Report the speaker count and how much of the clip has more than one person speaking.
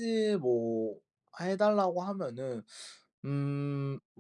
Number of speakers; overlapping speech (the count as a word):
one, no overlap